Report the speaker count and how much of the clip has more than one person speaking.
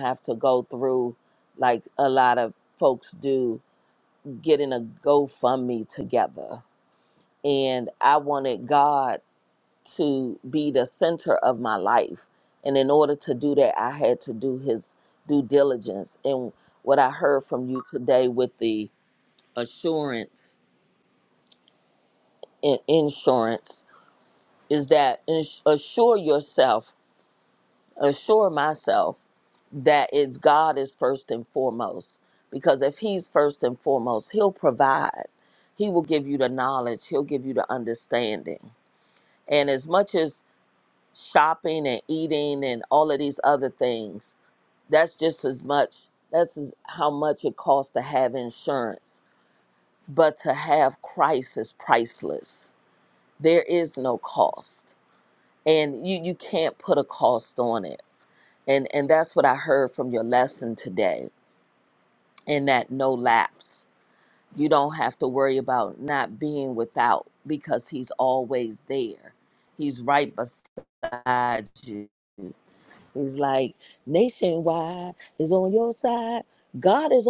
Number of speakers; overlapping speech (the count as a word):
one, no overlap